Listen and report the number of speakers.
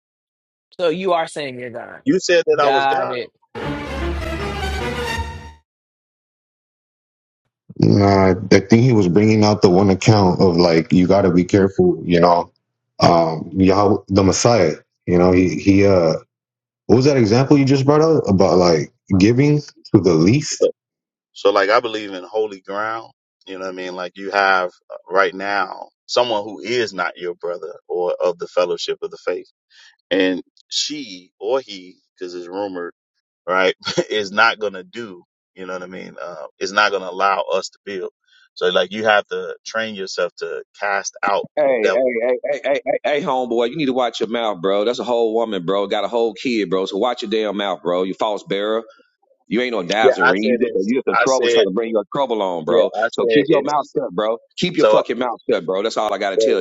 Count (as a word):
four